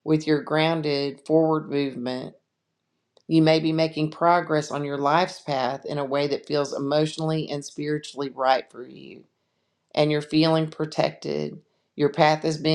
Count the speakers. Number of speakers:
1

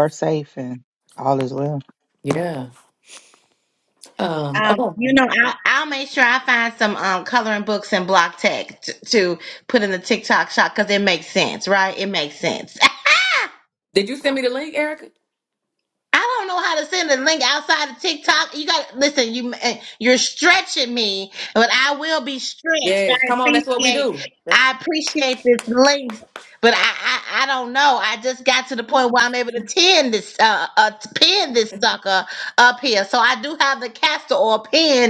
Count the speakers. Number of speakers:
3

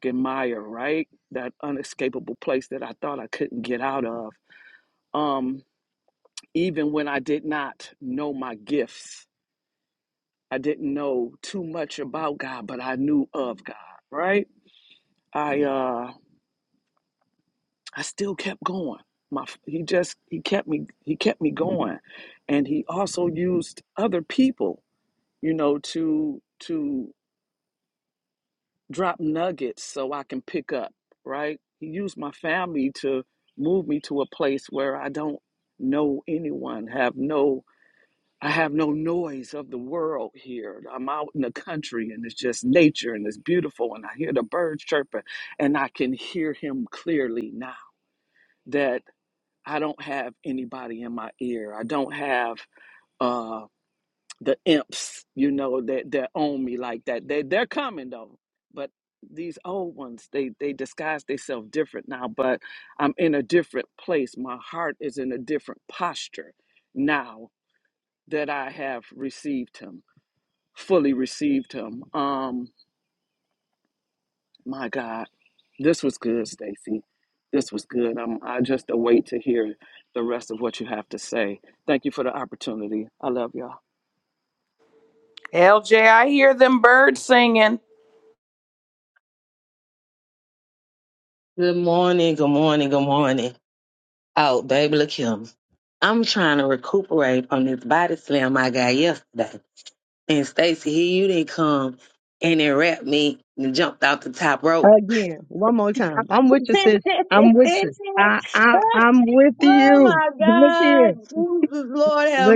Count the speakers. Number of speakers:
4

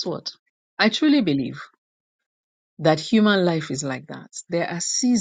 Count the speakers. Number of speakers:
1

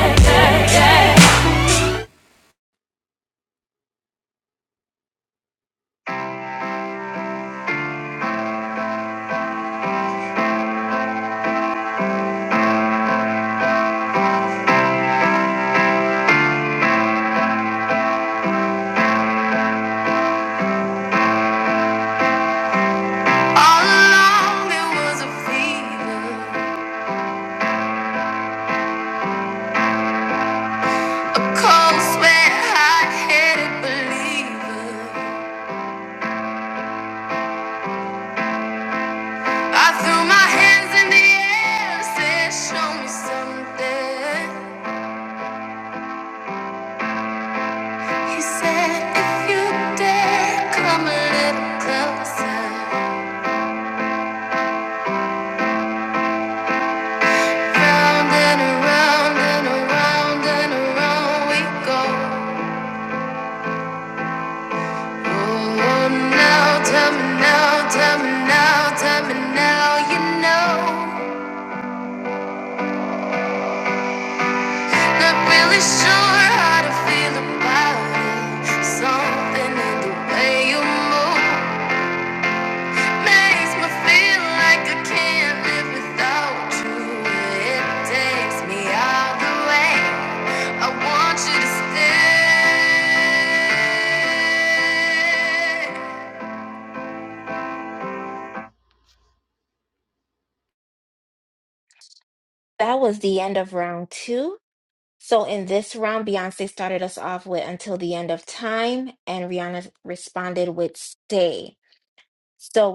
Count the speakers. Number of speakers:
3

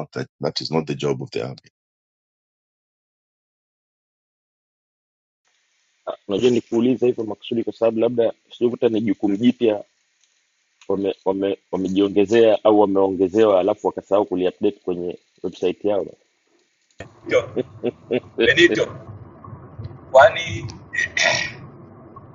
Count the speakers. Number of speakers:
3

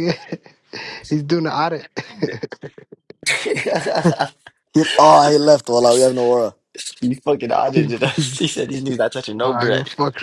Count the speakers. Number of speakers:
3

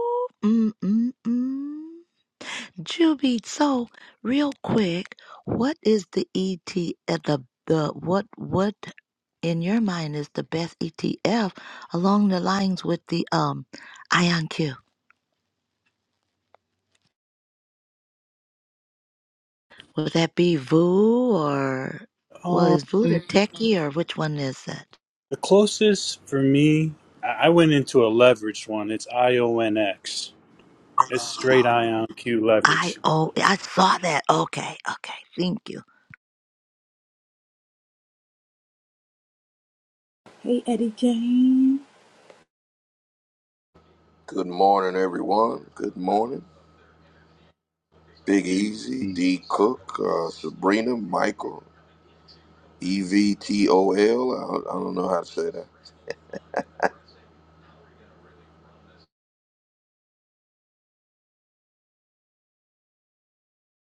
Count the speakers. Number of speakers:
4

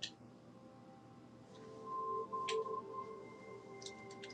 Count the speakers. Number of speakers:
0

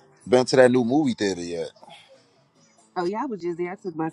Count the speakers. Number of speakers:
2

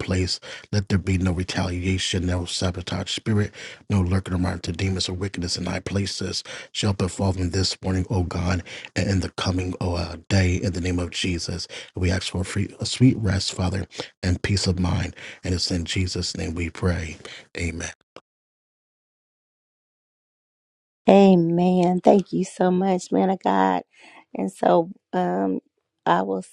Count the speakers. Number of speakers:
2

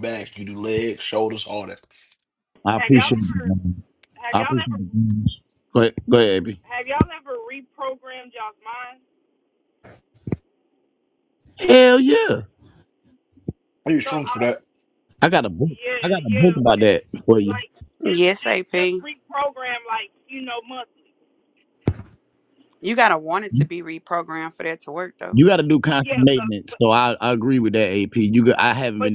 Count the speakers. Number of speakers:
4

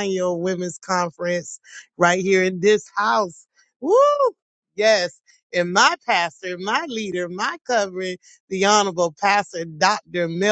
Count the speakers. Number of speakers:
1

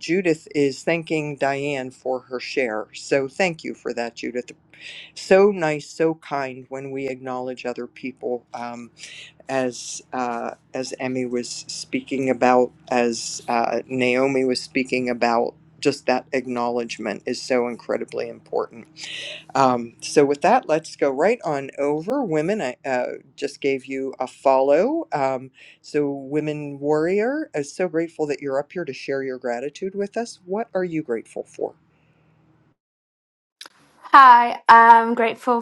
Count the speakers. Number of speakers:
2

